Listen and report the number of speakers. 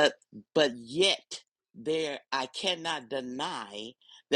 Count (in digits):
1